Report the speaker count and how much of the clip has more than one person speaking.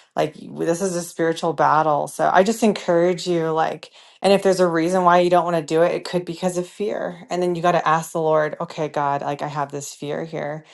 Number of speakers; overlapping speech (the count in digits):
1, no overlap